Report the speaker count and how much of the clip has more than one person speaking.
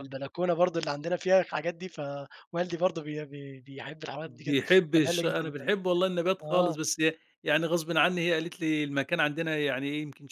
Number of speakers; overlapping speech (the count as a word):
two, about 10%